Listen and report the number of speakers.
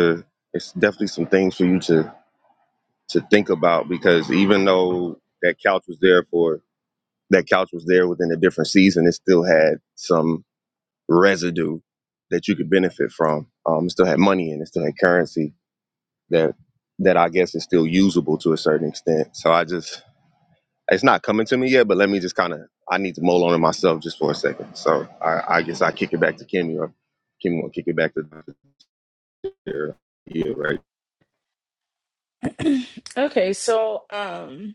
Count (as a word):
two